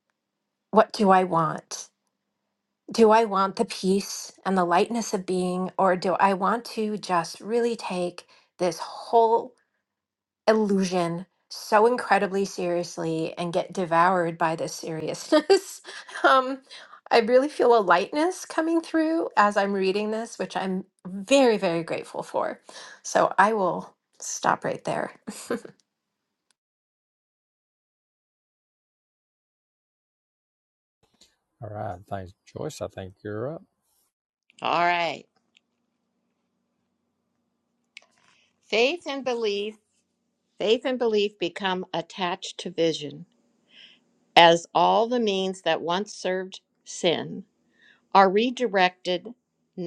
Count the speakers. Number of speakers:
three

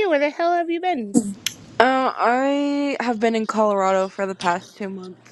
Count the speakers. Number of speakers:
two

